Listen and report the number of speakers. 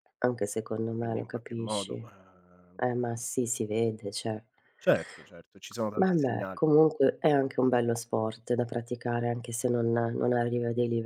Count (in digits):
2